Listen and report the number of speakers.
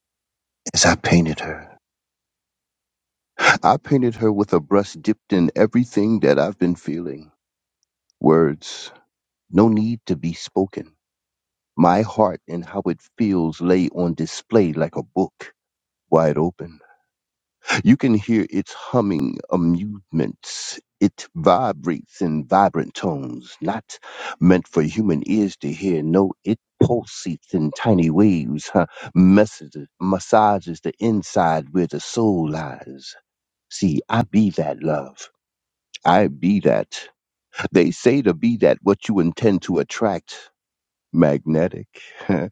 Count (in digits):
1